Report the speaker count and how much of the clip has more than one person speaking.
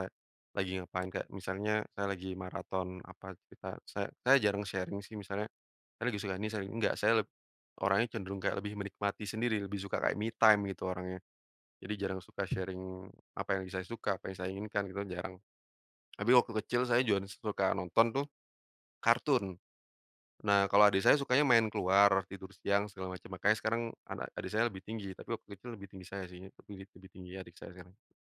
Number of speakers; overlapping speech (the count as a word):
one, no overlap